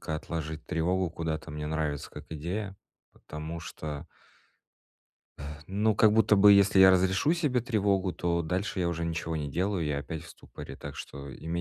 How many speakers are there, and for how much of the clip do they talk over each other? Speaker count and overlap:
1, no overlap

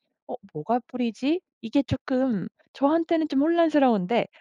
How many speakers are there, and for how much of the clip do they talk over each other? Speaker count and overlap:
1, no overlap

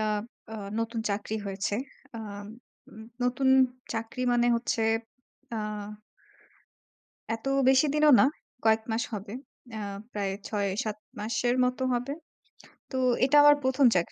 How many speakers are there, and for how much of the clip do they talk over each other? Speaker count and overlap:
1, no overlap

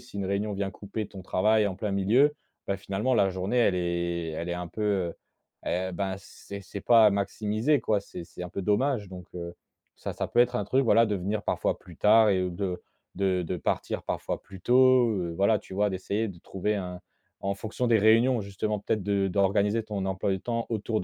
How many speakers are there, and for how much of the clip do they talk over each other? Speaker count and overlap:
1, no overlap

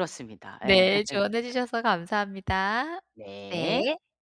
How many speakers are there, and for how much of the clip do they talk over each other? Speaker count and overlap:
2, about 16%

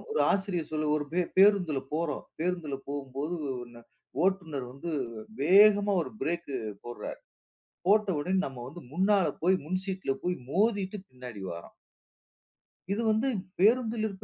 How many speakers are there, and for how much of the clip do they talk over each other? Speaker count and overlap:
1, no overlap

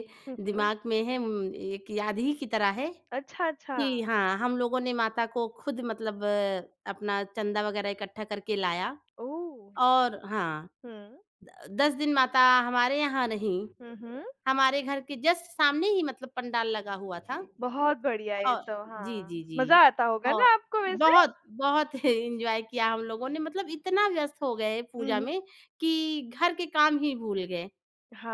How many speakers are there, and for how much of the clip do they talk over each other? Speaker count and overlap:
2, about 8%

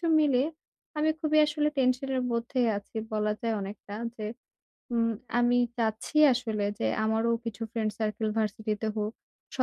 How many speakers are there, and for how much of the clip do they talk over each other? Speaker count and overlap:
1, no overlap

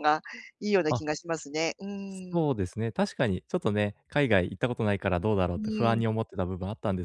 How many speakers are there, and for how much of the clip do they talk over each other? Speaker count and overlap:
2, about 10%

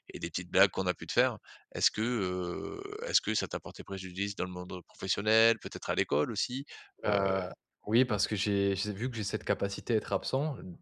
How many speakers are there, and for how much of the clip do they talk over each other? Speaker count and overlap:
2, about 1%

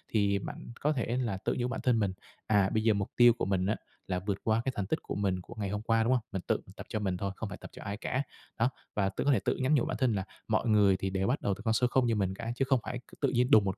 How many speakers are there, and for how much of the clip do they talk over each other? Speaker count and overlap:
1, no overlap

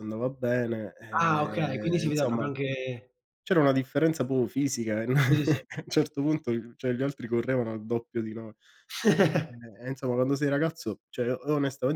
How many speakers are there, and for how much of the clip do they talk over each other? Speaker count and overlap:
2, about 11%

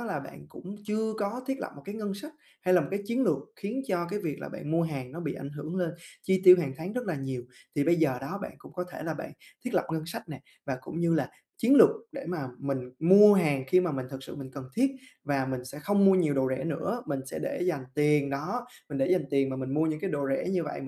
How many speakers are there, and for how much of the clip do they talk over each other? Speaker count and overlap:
1, no overlap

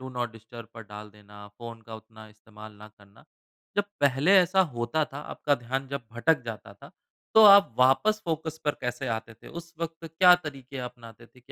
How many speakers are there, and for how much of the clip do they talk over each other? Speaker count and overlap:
1, no overlap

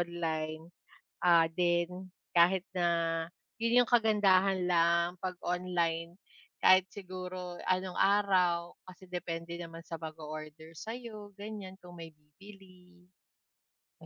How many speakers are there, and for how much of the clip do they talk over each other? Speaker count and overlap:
1, no overlap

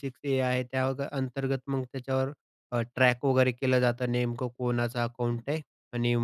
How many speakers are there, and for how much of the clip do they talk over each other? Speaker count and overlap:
1, no overlap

